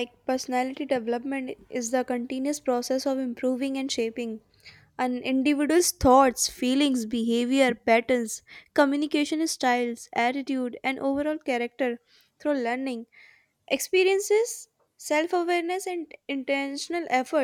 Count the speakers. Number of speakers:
one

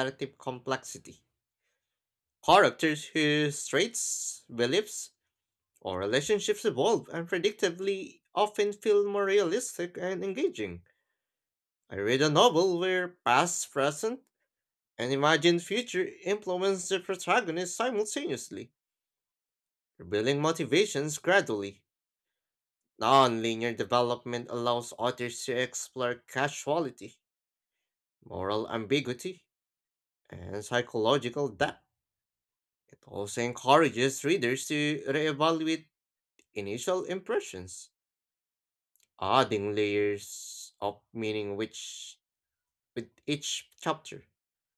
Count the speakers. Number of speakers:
one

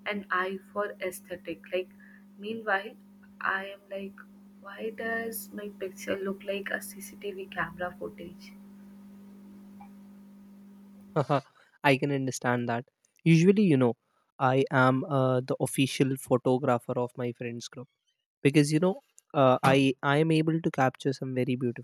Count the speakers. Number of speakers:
two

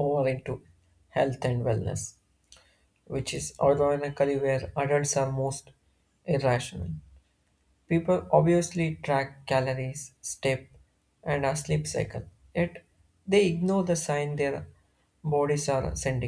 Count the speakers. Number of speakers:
one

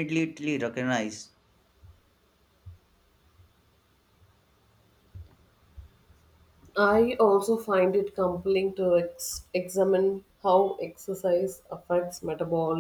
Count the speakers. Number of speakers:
two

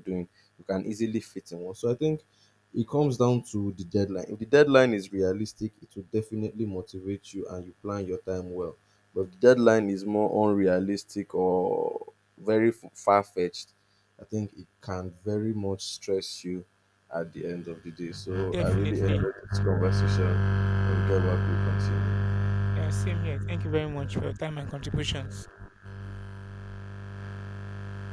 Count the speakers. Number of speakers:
two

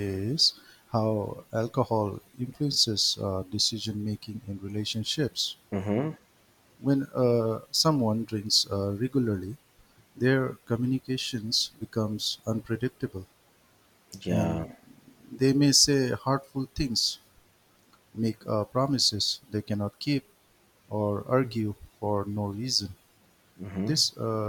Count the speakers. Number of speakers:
two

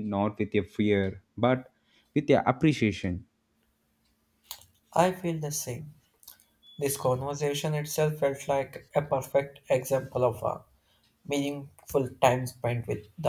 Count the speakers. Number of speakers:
two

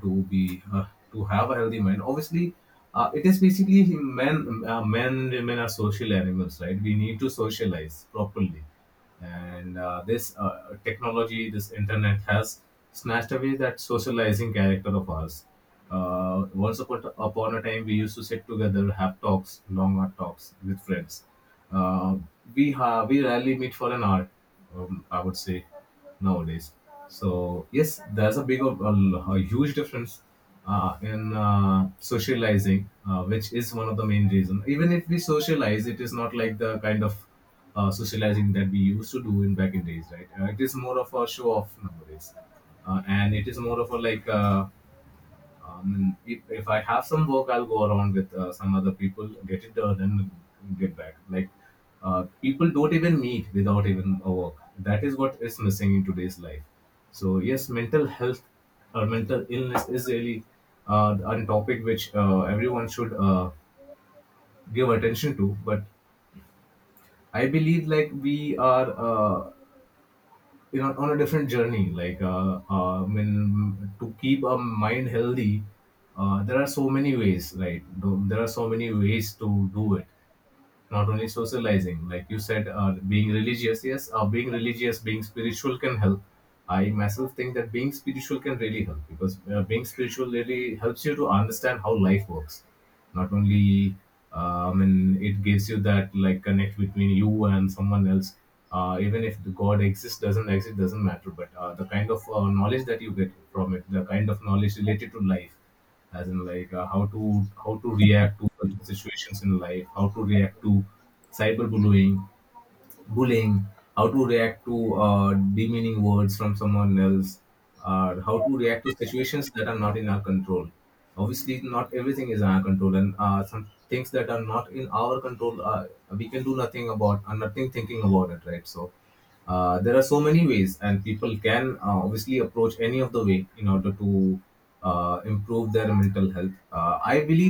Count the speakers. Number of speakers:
one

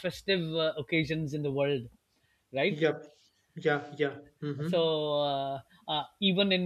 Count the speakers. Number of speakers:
two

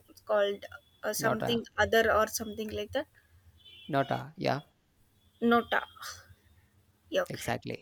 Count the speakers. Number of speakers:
two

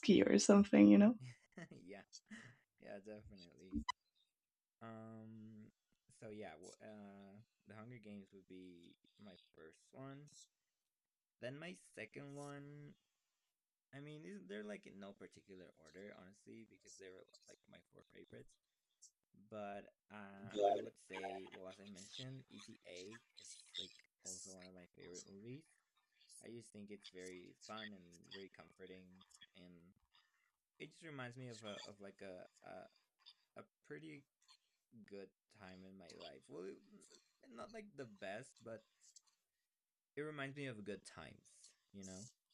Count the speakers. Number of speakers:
two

